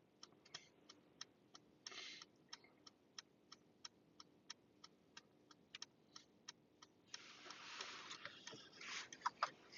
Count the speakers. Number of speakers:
zero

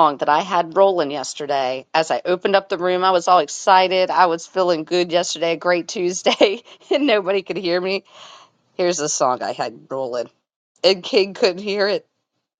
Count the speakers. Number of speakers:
one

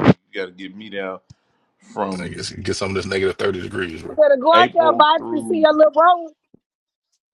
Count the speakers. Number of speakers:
three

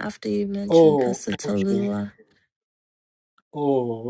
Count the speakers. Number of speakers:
two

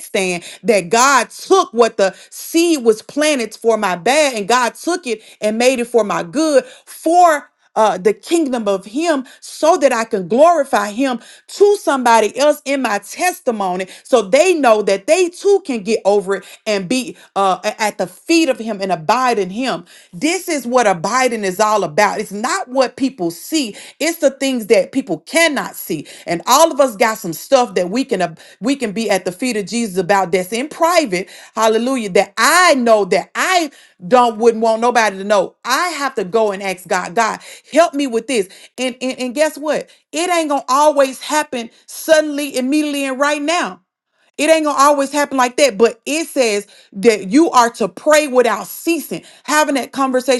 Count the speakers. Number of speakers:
one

